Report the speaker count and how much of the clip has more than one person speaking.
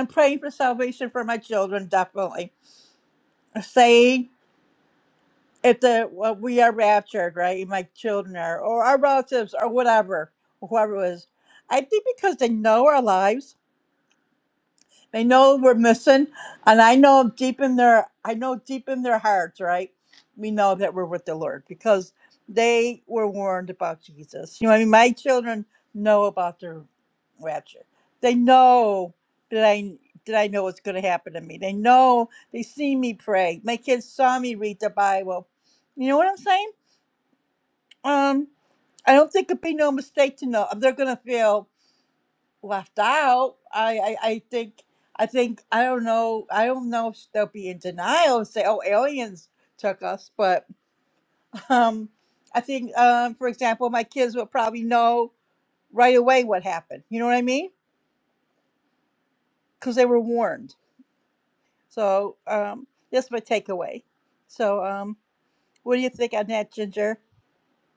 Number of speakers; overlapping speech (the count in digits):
1, no overlap